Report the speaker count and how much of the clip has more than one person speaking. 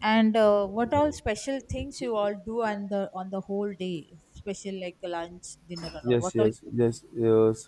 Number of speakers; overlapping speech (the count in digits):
2, about 6%